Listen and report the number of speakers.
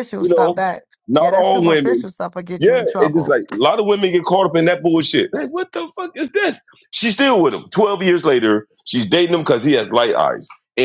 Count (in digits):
2